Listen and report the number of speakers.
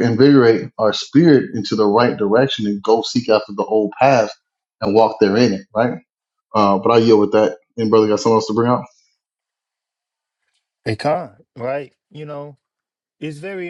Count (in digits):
2